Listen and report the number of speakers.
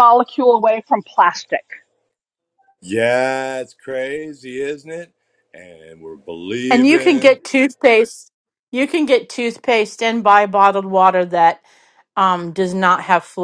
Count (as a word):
three